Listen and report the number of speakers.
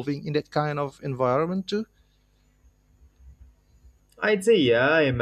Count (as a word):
two